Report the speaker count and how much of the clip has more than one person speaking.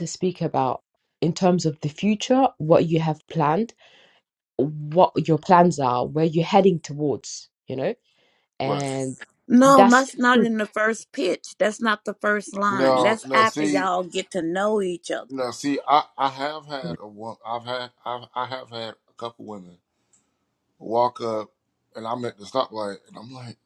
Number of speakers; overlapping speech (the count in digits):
3, about 8%